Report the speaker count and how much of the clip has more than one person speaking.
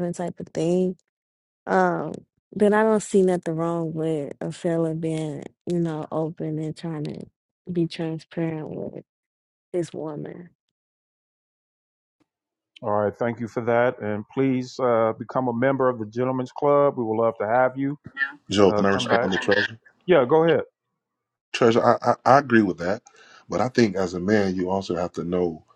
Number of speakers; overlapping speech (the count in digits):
3, about 3%